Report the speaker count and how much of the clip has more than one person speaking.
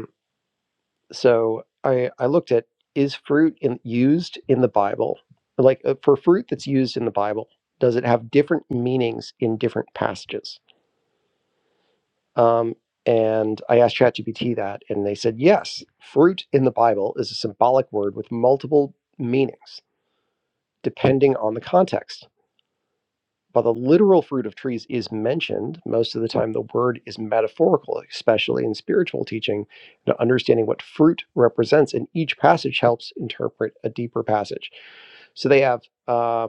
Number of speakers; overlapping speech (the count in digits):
1, no overlap